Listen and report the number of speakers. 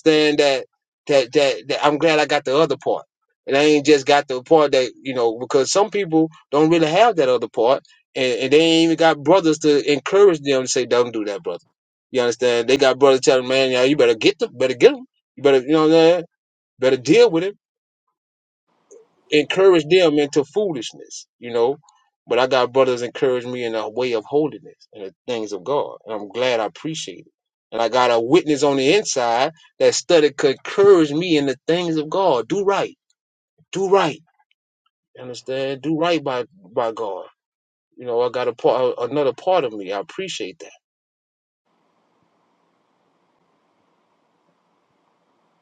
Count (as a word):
one